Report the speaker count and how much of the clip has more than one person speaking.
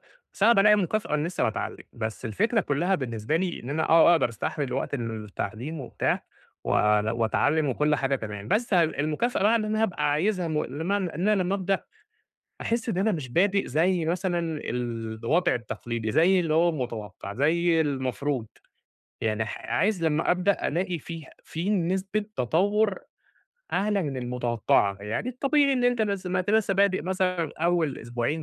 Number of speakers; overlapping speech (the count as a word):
one, no overlap